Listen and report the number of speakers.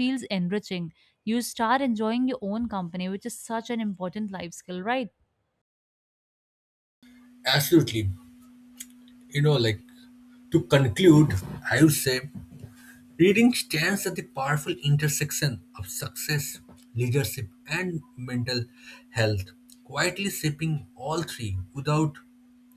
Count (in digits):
2